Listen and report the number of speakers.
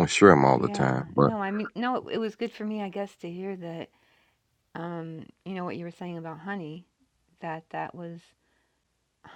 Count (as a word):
two